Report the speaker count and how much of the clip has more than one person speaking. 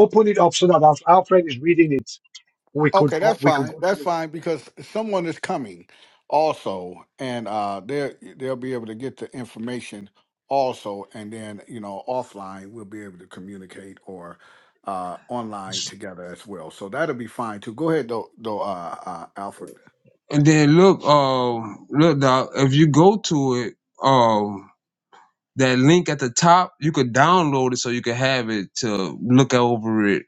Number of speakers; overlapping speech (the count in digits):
3, about 4%